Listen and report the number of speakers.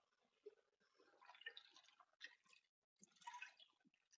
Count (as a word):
zero